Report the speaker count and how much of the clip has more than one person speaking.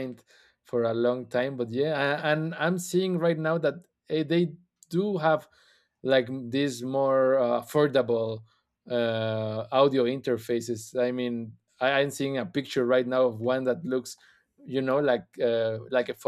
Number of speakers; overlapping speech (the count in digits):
1, no overlap